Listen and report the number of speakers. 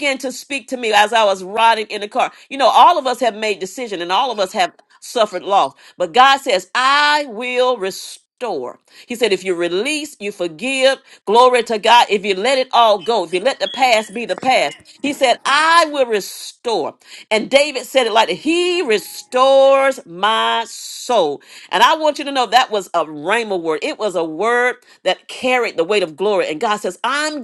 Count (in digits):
1